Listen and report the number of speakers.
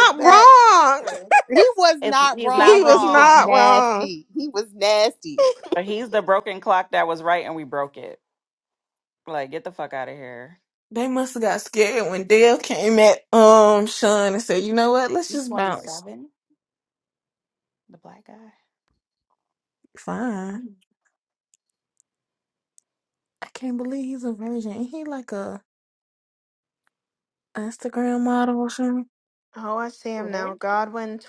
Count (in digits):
5